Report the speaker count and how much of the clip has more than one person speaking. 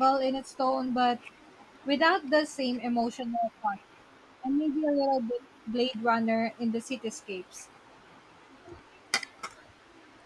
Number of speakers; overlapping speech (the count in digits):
1, no overlap